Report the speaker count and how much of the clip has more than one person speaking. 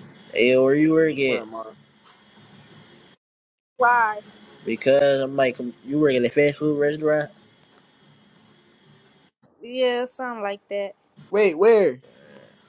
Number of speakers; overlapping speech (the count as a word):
three, about 1%